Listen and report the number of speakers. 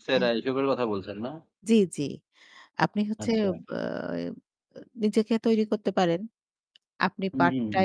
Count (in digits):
2